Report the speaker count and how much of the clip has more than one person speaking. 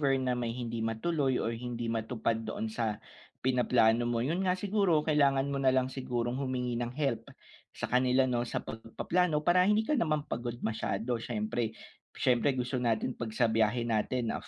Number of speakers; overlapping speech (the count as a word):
one, no overlap